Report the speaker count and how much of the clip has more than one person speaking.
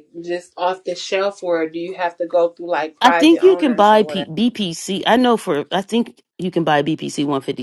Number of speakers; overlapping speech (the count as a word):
two, about 16%